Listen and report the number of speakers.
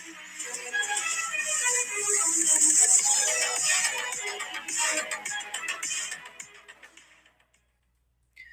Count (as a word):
zero